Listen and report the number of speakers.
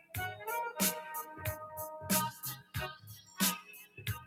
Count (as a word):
zero